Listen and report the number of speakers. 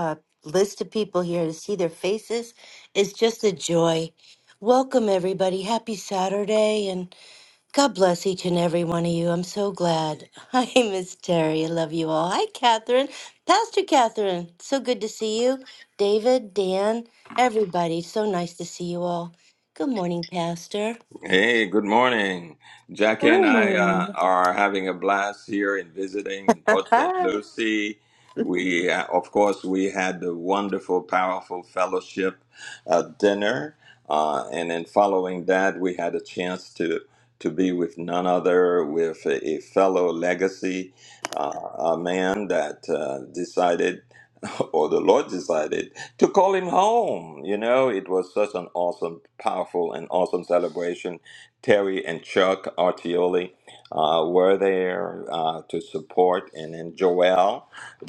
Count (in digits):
2